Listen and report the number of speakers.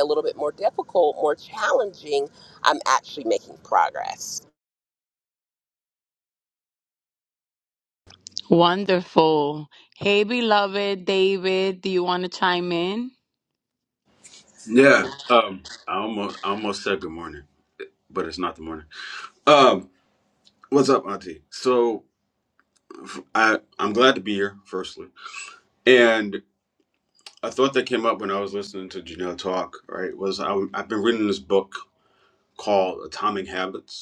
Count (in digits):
3